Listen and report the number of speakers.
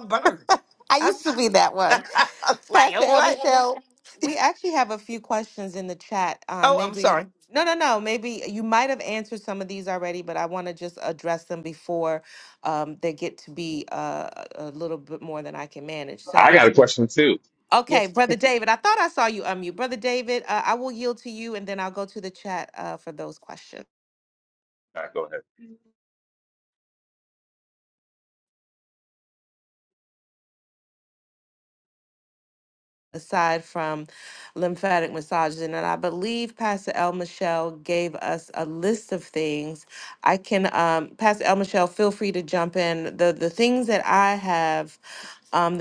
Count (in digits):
3